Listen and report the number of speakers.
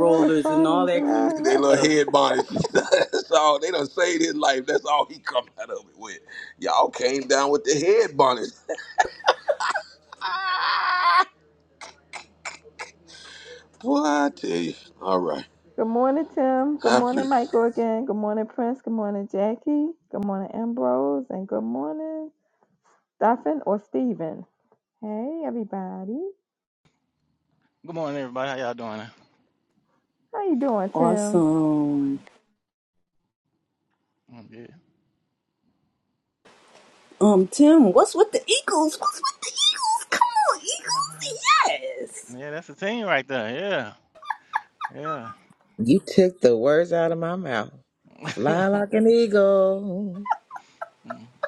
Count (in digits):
5